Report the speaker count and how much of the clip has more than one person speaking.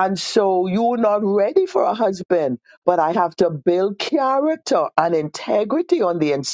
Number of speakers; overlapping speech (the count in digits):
1, no overlap